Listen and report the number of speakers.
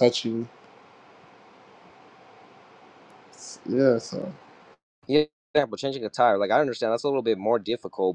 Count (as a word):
two